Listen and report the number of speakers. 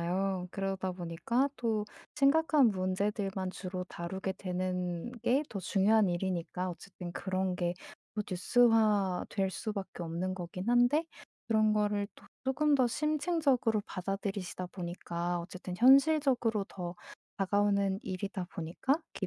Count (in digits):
1